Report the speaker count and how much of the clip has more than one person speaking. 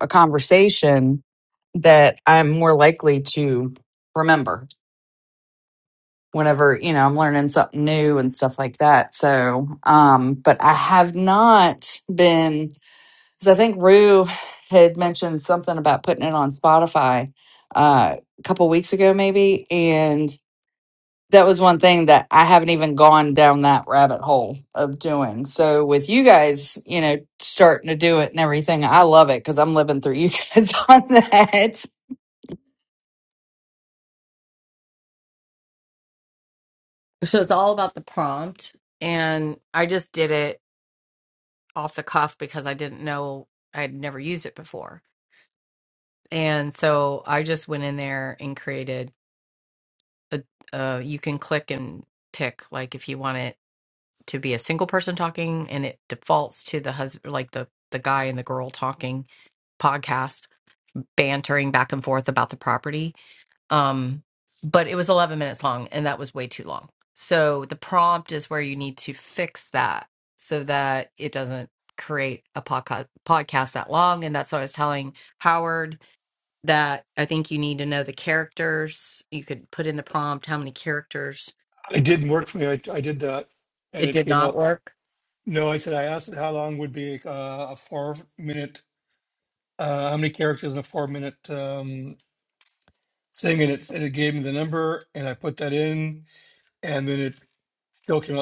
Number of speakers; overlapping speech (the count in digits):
3, about 1%